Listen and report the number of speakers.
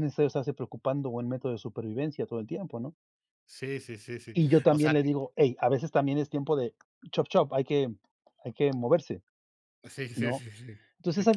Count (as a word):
two